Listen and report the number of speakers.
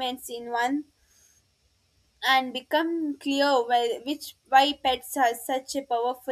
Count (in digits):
1